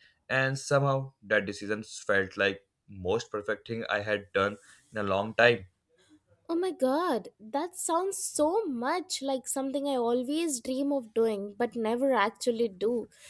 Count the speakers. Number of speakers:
two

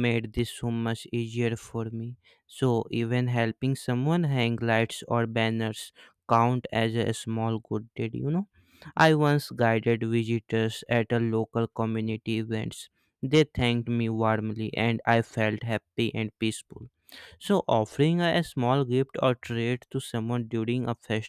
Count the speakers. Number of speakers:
one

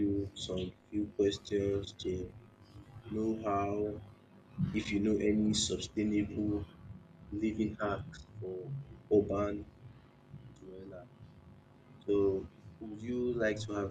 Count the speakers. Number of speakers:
one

